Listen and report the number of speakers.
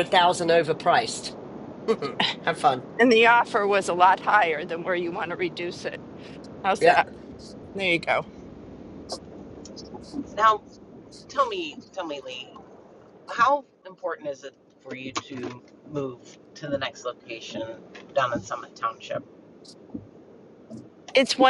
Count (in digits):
3